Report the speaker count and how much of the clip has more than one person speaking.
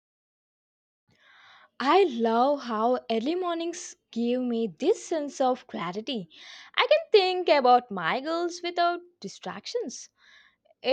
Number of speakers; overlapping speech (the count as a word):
one, no overlap